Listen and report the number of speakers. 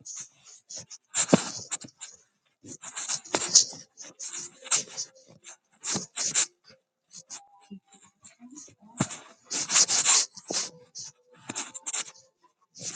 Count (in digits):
0